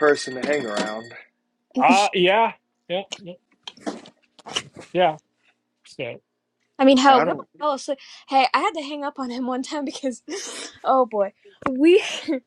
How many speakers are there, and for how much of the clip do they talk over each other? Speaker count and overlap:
3, about 3%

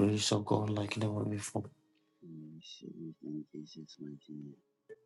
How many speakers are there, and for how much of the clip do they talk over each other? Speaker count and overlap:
2, no overlap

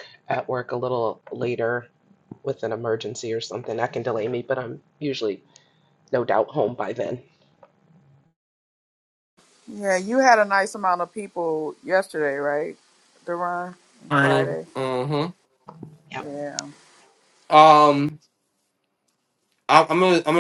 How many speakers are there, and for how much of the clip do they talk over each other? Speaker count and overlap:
3, about 3%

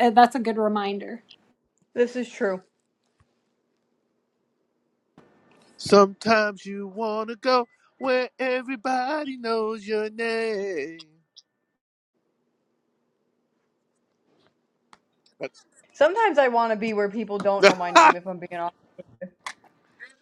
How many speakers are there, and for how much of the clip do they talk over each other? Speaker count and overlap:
3, no overlap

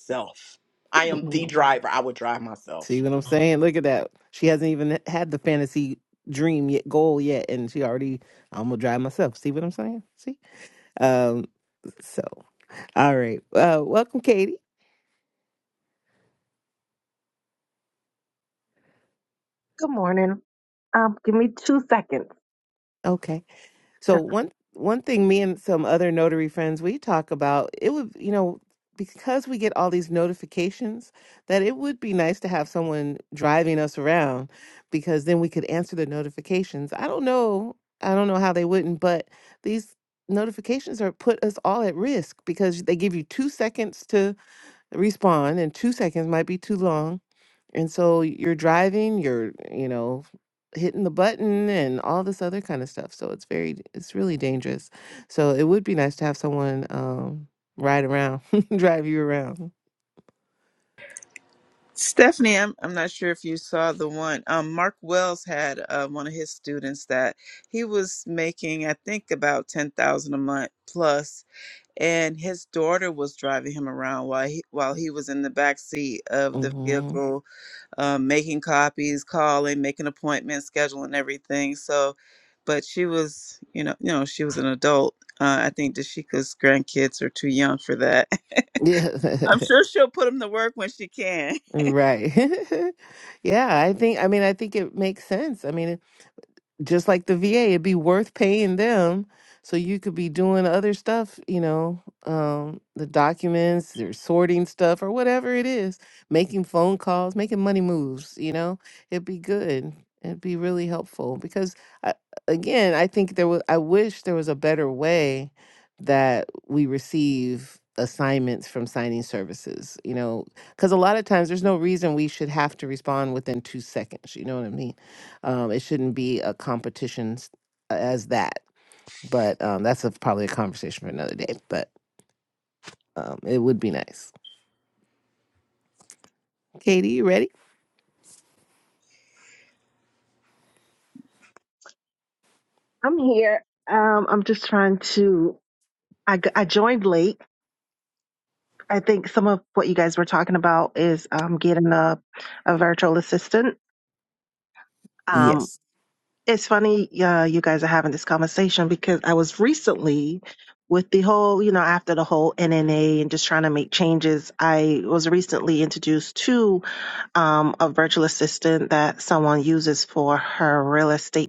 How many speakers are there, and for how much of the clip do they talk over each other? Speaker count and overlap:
4, about 1%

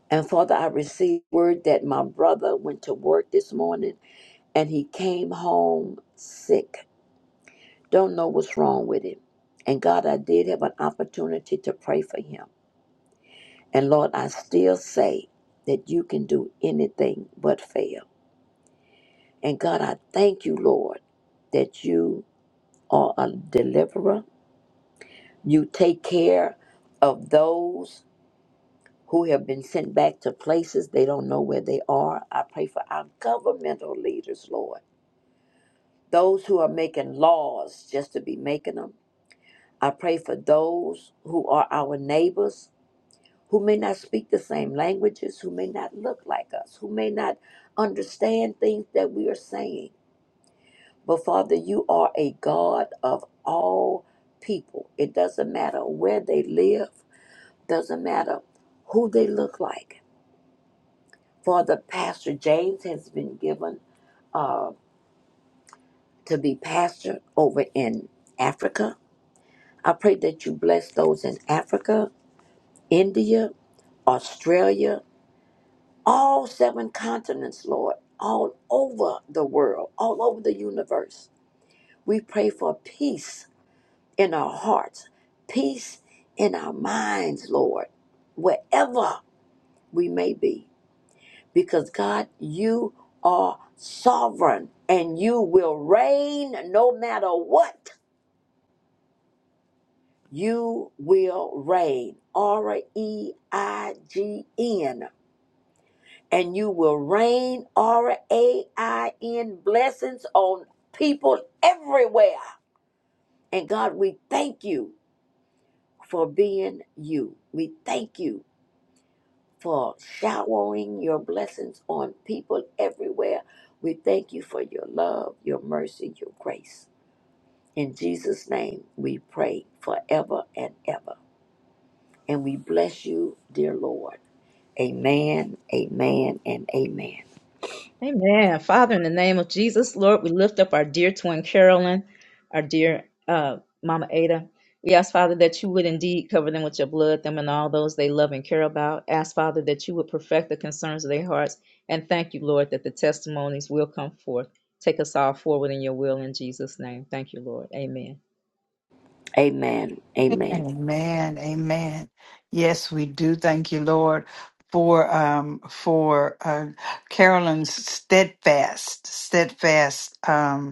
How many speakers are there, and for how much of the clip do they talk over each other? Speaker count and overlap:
3, under 1%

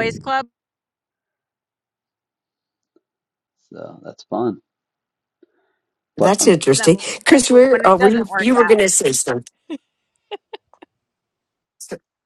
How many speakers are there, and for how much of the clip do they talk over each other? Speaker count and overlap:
3, about 20%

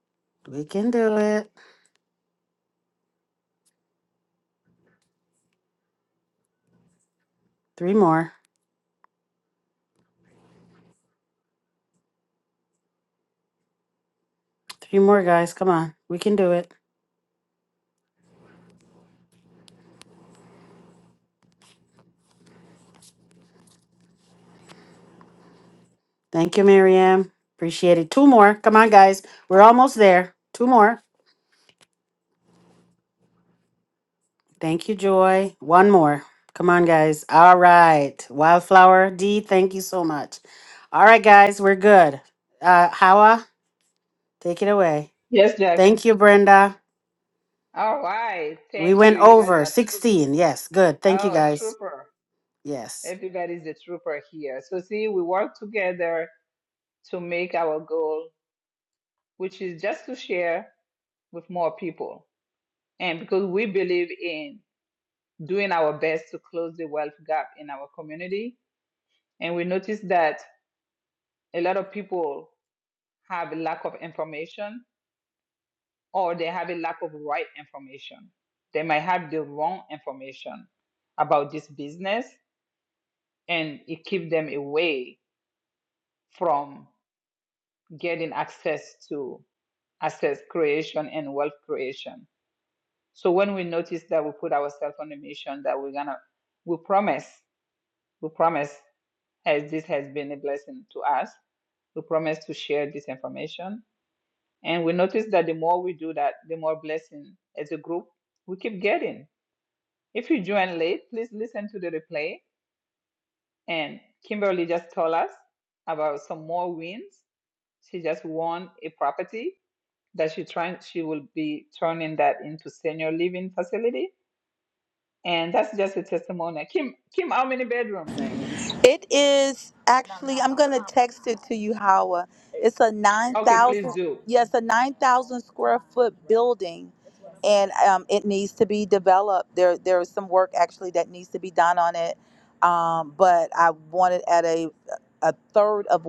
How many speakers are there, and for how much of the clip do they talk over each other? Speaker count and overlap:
3, about 2%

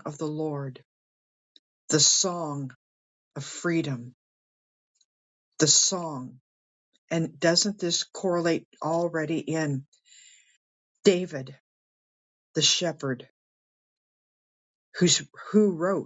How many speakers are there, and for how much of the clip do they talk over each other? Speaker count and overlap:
1, no overlap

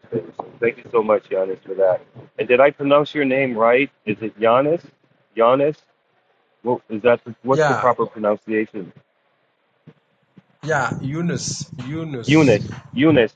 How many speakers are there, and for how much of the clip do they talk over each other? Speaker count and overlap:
2, about 6%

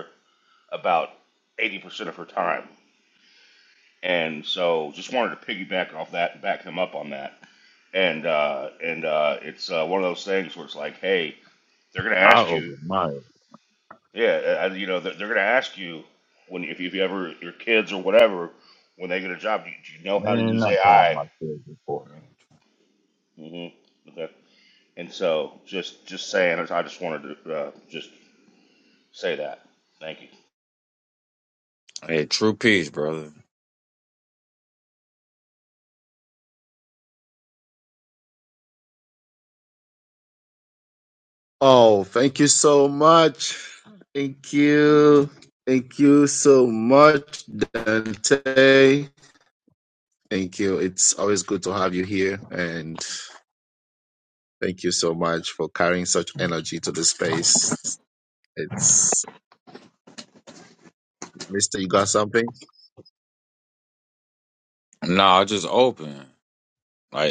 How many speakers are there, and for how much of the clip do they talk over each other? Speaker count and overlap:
3, about 2%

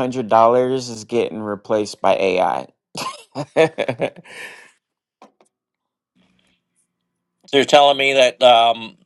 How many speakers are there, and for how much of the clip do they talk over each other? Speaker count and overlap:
2, no overlap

